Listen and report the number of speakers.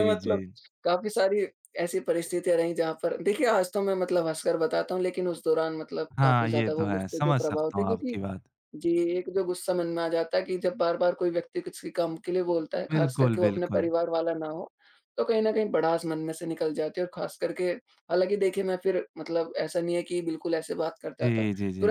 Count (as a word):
two